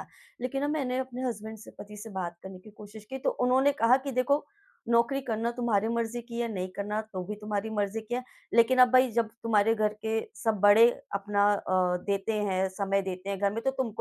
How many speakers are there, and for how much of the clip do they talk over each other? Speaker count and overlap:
1, no overlap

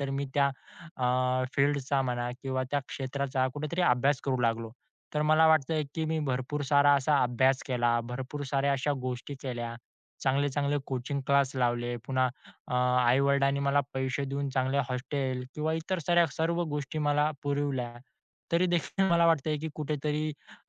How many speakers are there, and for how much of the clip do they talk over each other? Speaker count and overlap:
1, no overlap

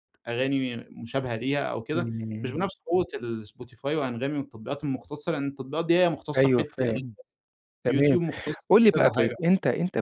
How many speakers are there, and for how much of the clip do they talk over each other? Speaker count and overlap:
2, about 17%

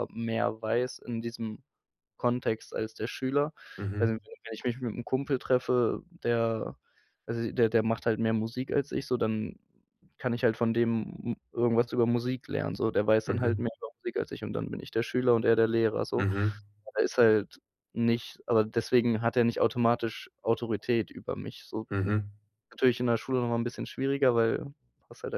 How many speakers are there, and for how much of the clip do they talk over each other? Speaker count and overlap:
2, about 2%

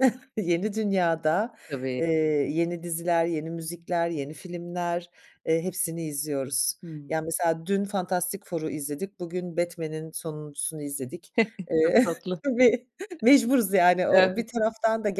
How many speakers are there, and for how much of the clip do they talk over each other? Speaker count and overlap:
2, about 4%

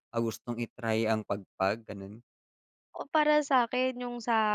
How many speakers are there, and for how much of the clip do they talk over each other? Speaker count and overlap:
2, no overlap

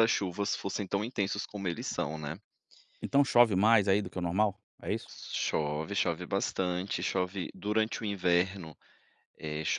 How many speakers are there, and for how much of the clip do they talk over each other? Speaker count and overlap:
2, no overlap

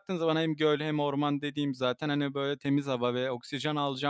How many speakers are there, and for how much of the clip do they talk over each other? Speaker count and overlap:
1, no overlap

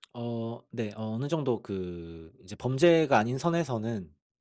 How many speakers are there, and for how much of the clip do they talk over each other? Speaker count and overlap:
1, no overlap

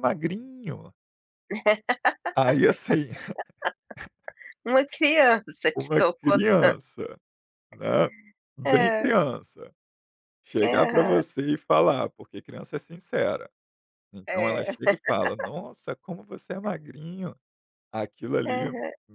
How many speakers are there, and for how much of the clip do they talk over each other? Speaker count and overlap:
2, about 15%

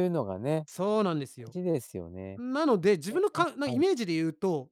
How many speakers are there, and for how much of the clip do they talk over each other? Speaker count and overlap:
2, about 15%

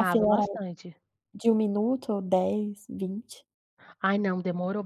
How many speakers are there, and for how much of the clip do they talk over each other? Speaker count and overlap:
2, about 11%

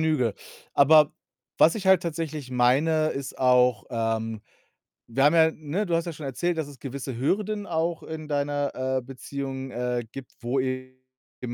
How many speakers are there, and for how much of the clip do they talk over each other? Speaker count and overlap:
1, no overlap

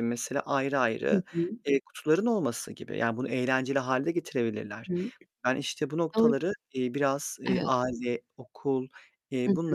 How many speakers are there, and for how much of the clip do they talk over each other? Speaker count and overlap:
2, about 10%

